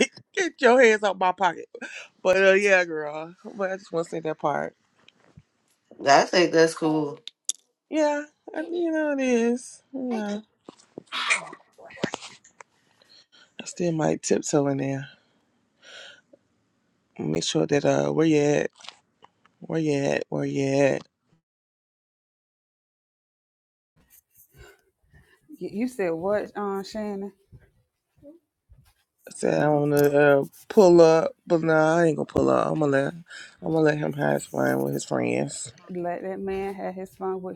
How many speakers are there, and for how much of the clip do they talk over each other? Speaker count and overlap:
three, about 1%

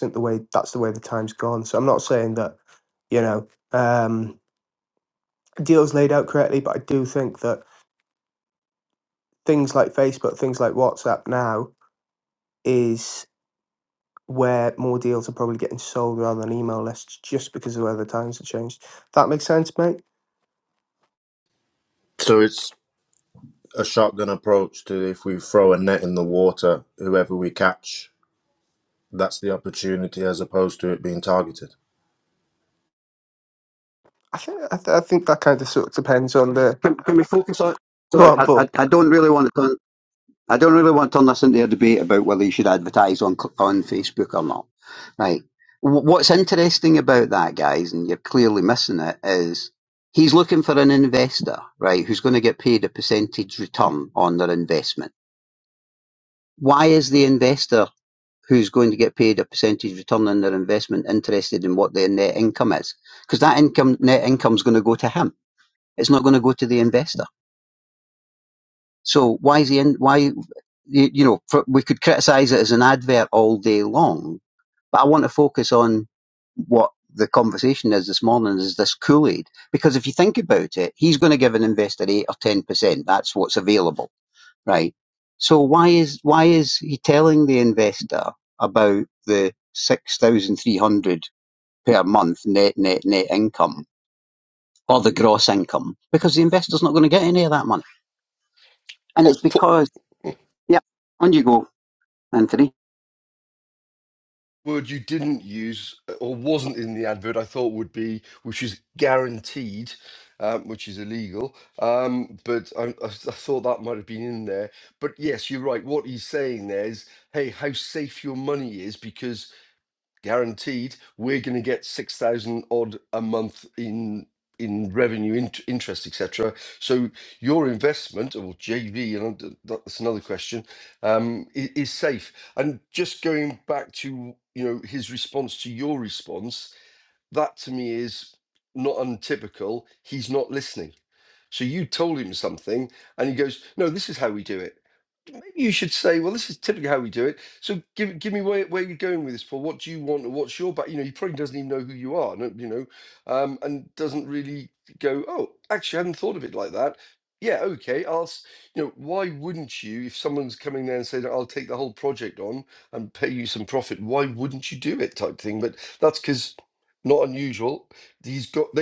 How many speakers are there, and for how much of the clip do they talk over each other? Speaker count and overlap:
four, under 1%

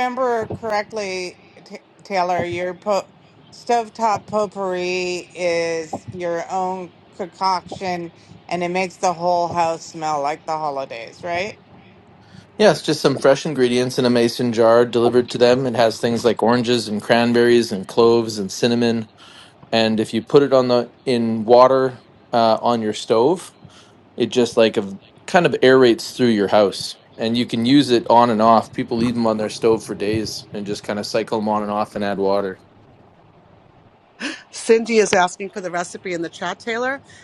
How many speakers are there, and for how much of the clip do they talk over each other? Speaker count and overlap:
three, no overlap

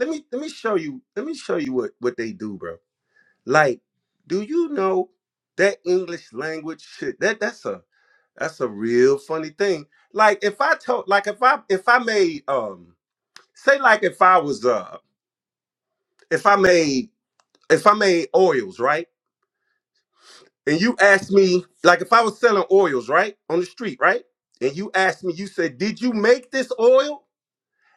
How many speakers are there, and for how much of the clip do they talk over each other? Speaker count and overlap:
one, no overlap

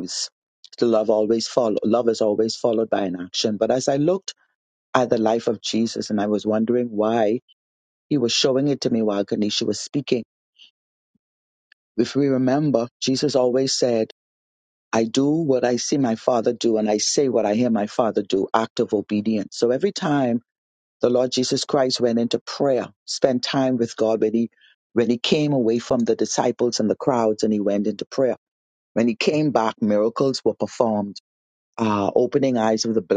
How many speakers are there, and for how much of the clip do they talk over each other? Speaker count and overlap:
one, no overlap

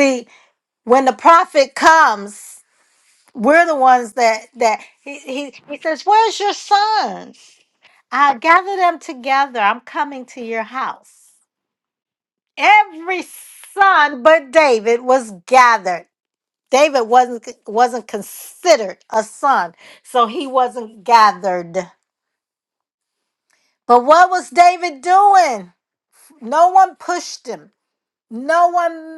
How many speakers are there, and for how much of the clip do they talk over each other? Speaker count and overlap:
one, no overlap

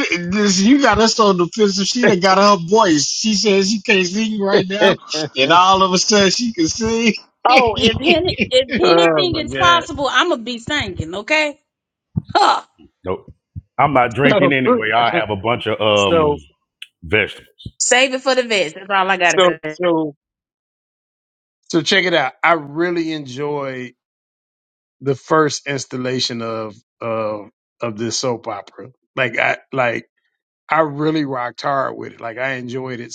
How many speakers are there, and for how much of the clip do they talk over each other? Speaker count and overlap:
four, about 6%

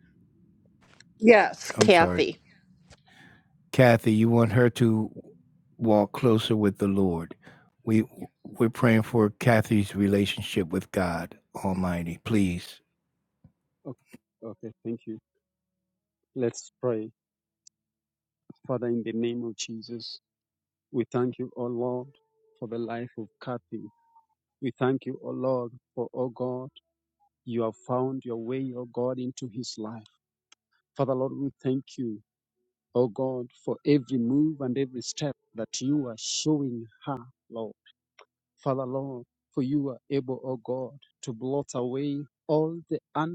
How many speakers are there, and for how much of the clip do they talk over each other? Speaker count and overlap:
three, about 1%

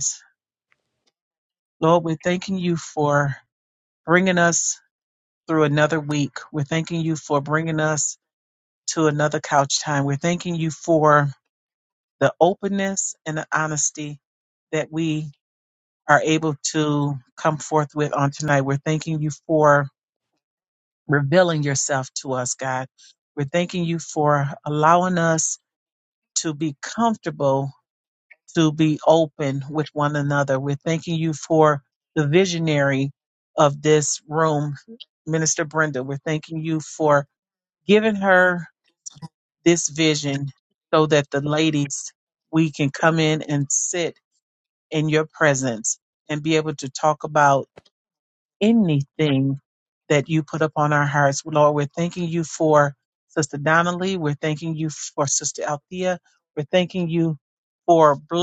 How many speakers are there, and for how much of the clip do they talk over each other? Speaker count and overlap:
one, no overlap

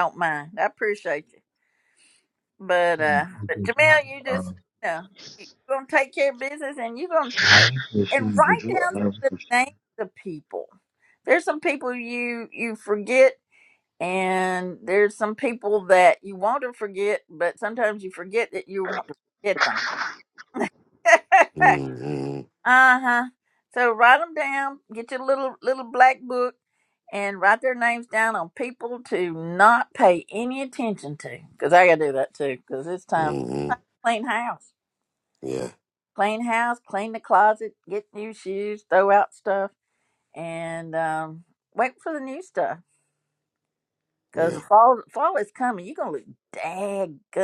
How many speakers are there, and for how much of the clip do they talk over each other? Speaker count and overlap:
three, about 6%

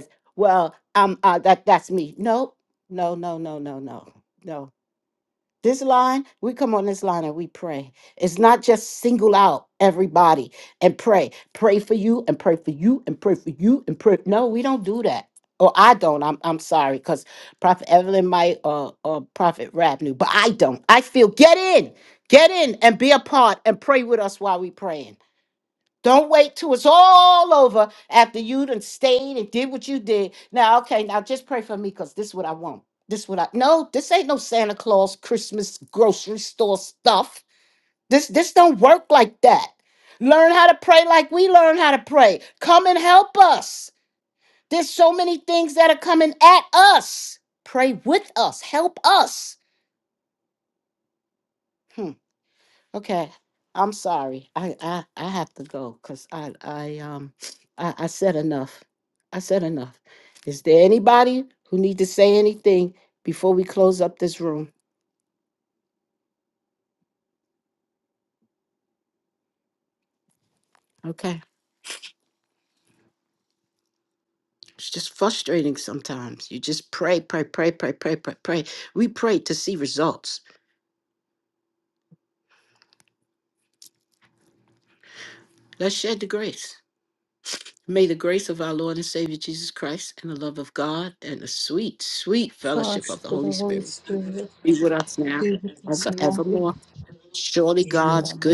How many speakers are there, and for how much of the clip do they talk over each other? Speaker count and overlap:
two, about 2%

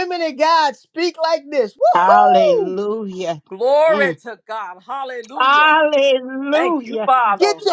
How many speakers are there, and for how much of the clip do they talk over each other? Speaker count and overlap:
three, about 23%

